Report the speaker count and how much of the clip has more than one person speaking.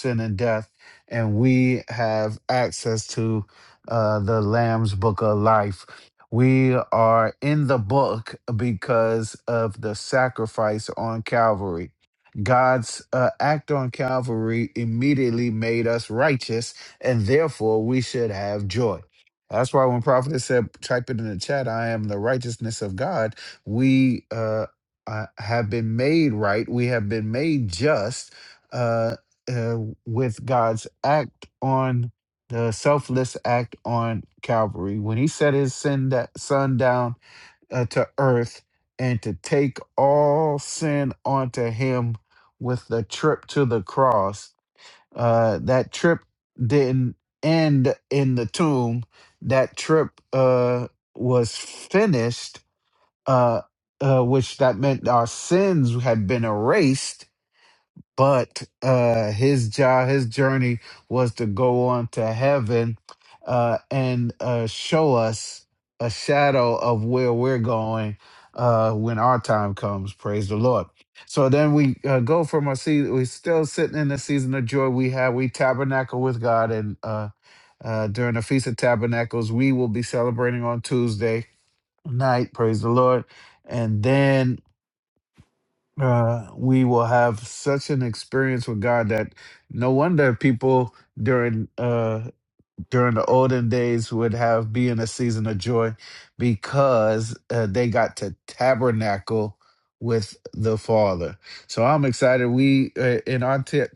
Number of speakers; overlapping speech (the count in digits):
1, no overlap